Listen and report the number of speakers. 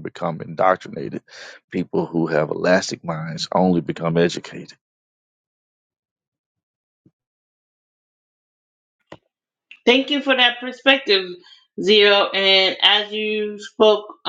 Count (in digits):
2